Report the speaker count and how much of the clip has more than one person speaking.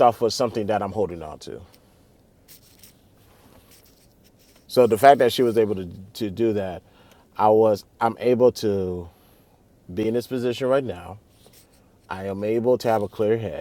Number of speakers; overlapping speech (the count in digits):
1, no overlap